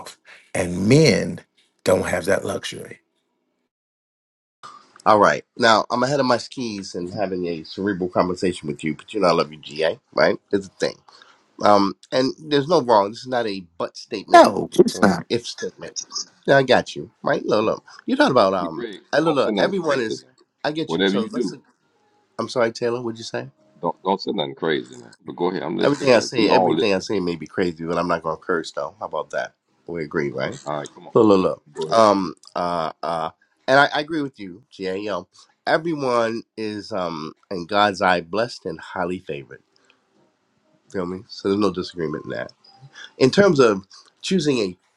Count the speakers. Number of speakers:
three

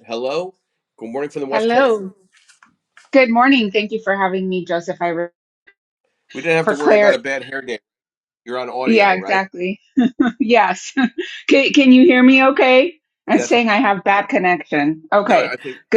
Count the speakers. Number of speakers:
two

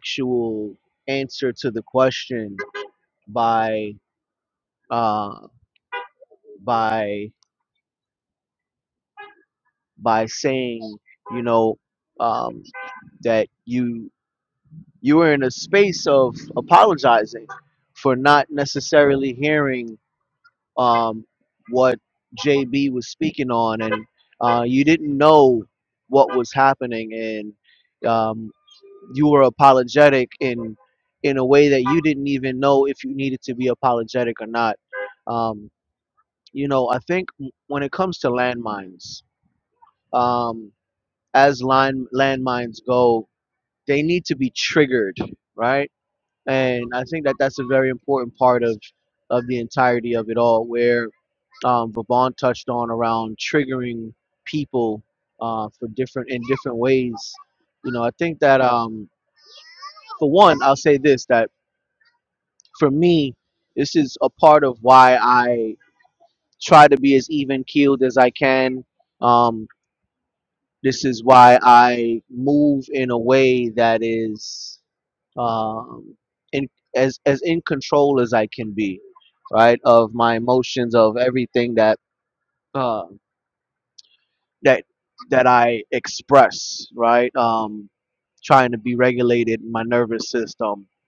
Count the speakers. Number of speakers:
one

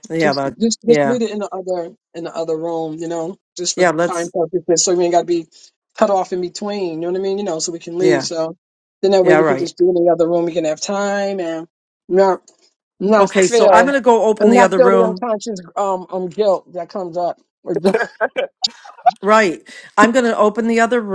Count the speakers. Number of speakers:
two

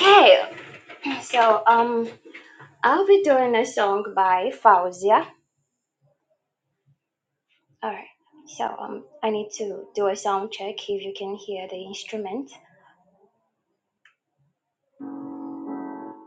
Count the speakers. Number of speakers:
one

